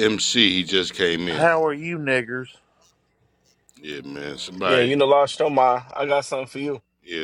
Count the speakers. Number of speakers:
3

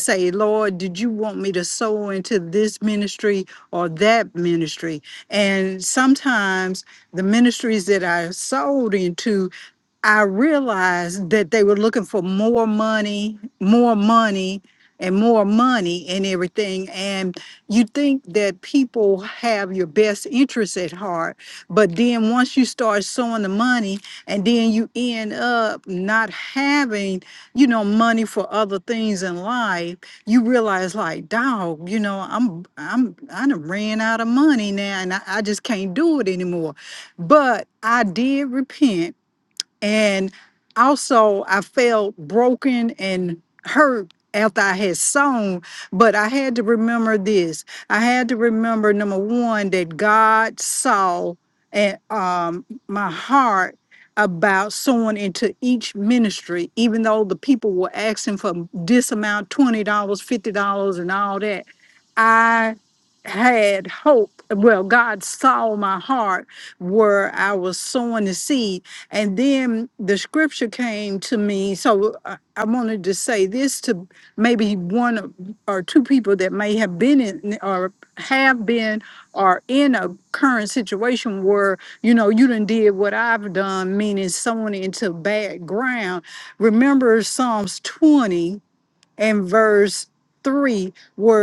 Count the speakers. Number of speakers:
1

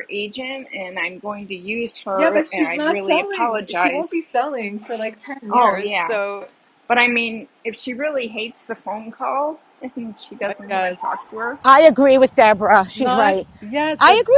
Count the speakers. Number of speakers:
3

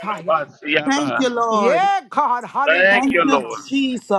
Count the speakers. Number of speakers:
3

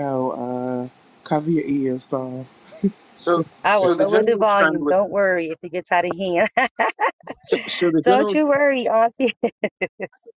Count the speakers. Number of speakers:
3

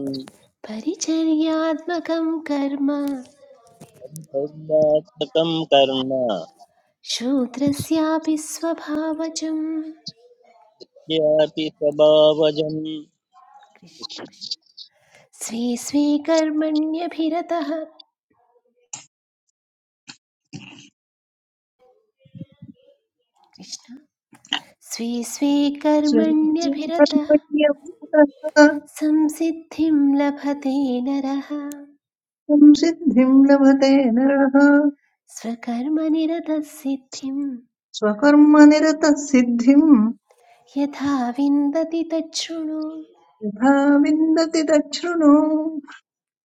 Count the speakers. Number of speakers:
3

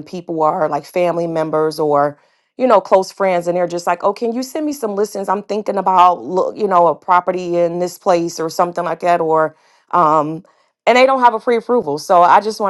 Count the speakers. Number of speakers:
1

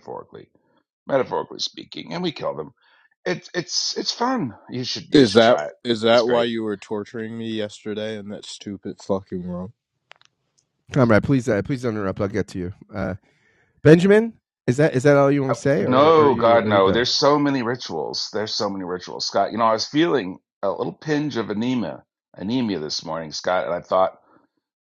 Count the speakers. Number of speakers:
3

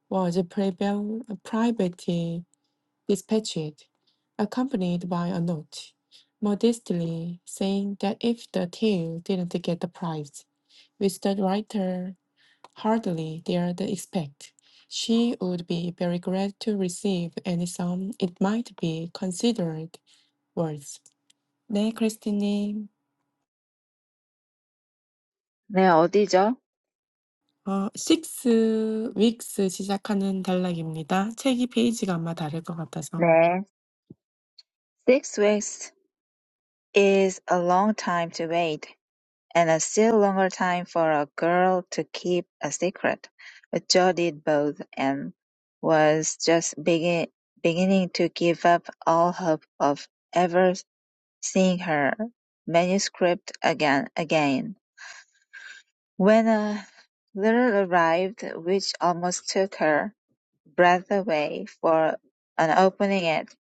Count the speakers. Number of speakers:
2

